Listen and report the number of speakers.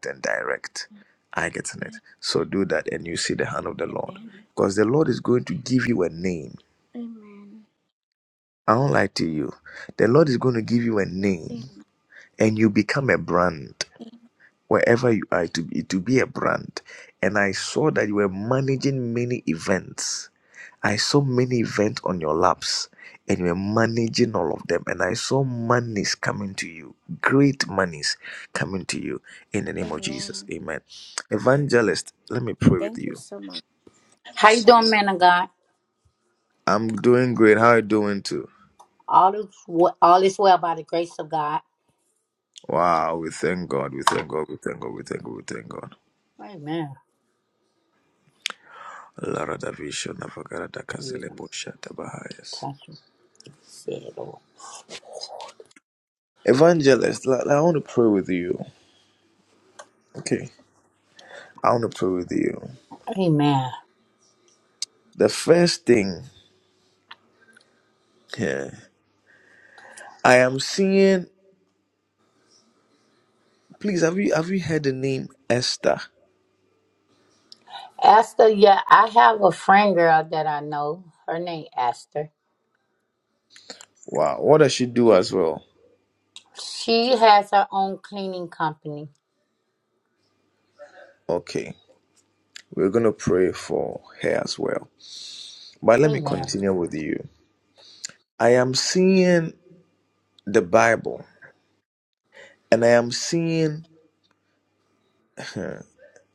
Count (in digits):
3